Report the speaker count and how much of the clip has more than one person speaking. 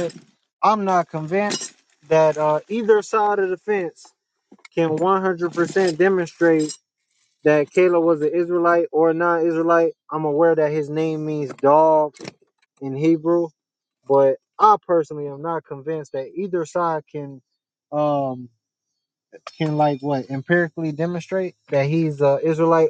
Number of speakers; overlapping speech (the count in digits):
1, no overlap